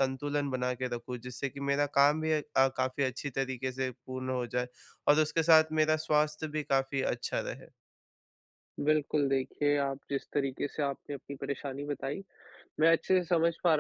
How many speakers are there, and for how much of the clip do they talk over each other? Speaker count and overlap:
two, no overlap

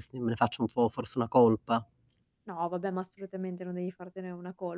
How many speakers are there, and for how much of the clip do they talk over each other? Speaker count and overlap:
two, no overlap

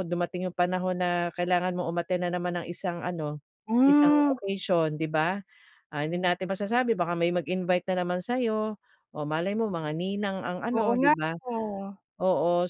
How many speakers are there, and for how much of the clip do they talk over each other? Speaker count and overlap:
two, about 9%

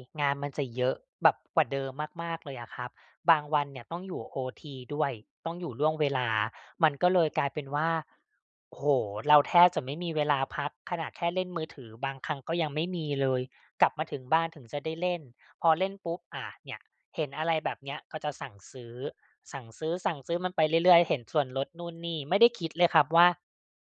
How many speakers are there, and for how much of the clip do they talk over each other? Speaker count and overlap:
one, no overlap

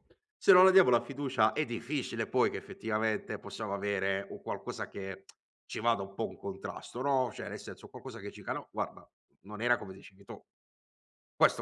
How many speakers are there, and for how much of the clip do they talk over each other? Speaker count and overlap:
one, no overlap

